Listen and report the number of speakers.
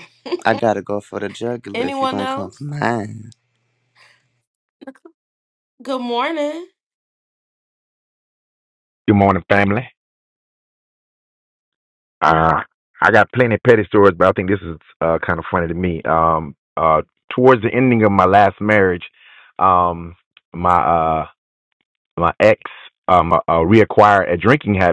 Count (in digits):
3